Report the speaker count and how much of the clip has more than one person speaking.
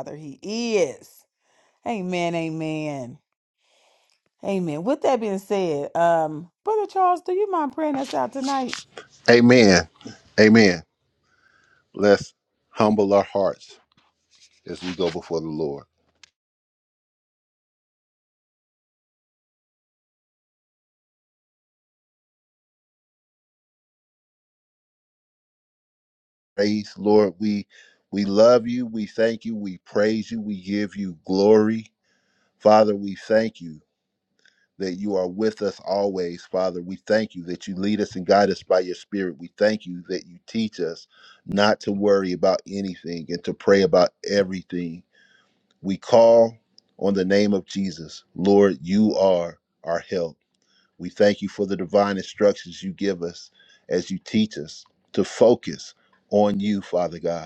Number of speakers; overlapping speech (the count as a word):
two, no overlap